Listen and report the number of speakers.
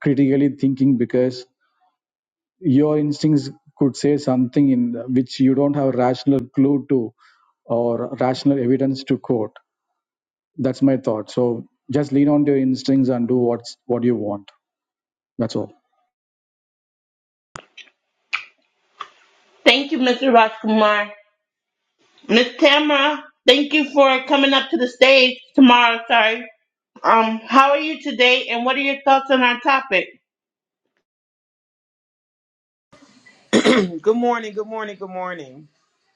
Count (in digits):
3